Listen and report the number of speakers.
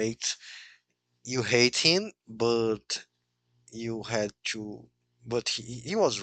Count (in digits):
1